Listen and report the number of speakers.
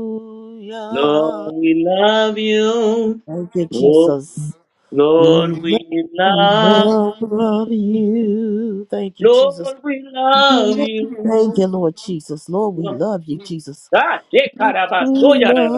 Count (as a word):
two